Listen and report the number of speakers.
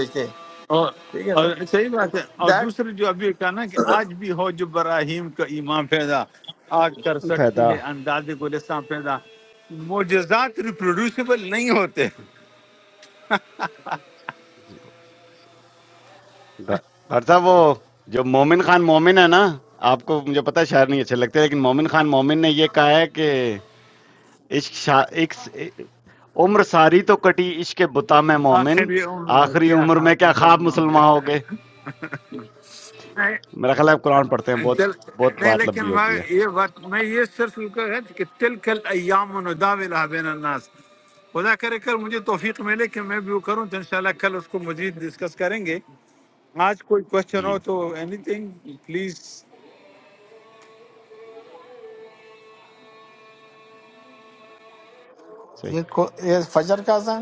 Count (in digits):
4